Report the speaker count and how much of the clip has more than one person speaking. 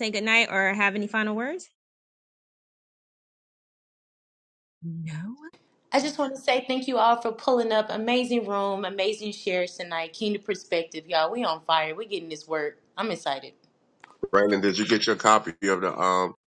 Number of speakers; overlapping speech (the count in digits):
3, no overlap